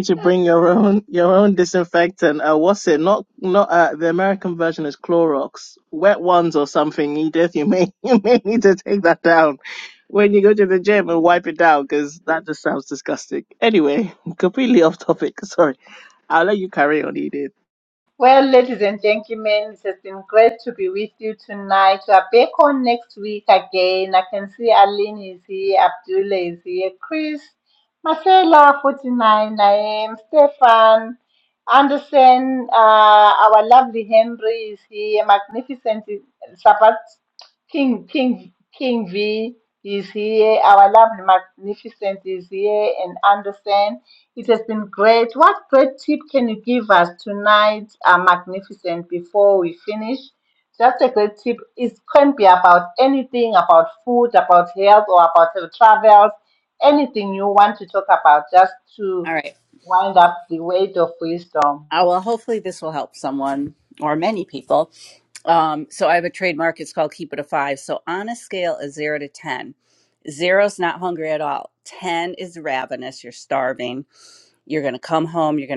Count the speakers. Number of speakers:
3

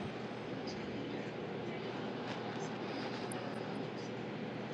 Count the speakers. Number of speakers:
0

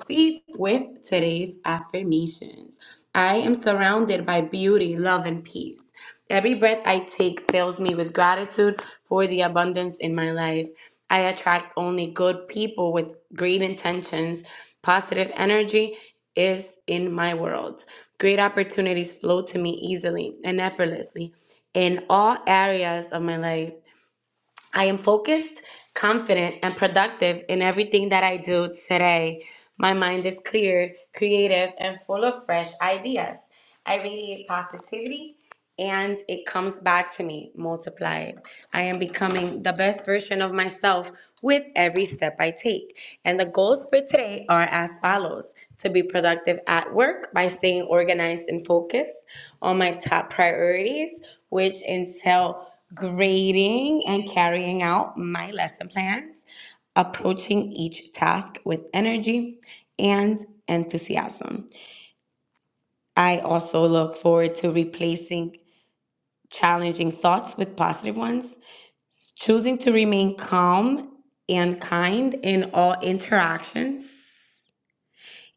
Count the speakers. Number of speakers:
1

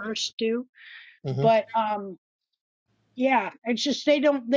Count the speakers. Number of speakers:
1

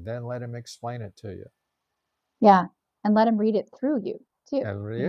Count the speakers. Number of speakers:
2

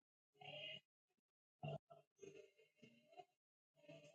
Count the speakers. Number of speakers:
0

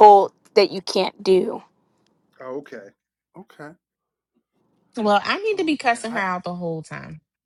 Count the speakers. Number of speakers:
3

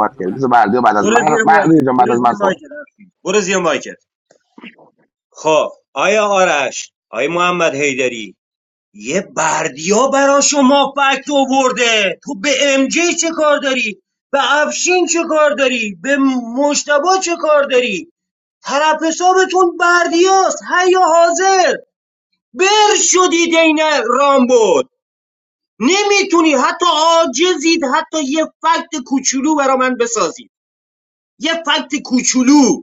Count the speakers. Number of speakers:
2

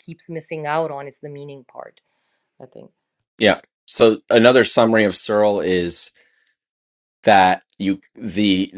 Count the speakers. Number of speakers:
2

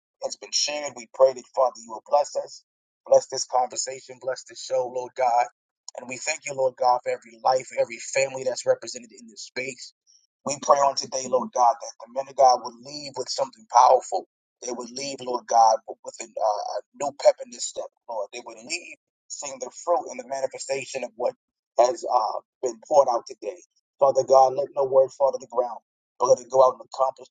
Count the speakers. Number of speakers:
1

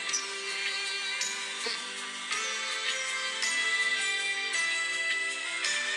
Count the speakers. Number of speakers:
0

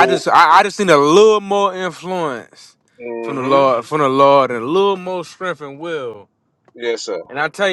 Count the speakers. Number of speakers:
2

